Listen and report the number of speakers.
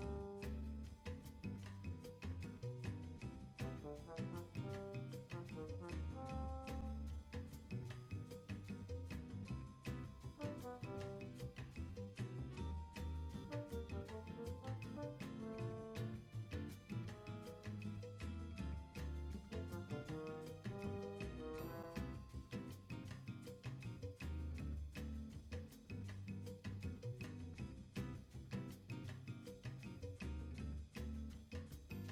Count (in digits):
0